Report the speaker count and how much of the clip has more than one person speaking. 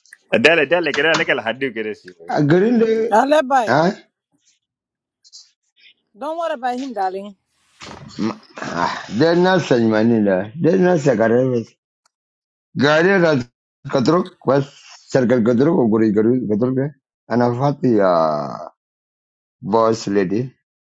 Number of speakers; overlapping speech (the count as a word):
three, under 1%